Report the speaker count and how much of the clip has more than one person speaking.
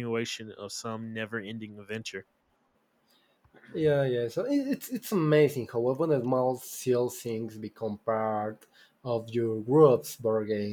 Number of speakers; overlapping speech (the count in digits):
2, no overlap